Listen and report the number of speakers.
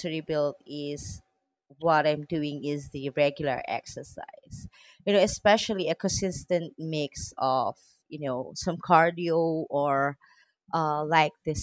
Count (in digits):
1